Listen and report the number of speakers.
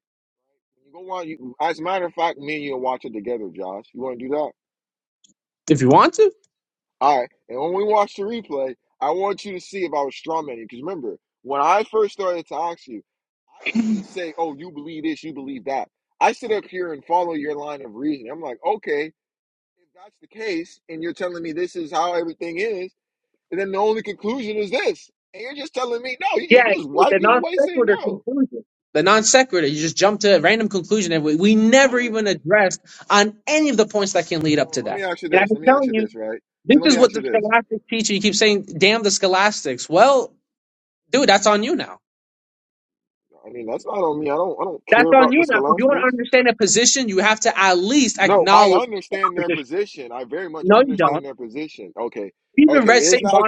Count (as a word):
two